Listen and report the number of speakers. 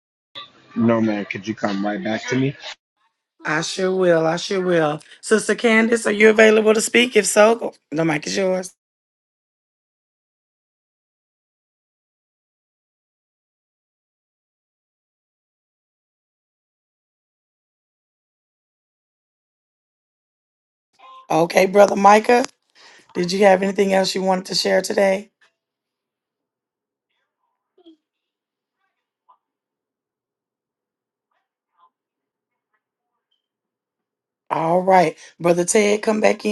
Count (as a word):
two